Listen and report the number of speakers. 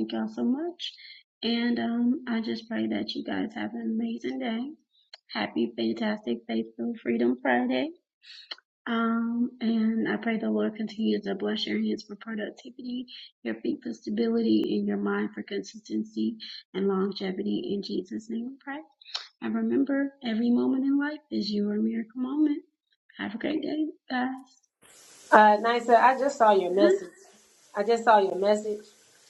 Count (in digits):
2